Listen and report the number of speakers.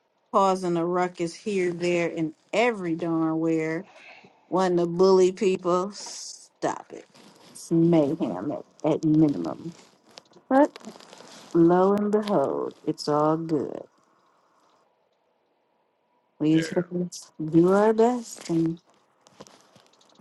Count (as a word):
one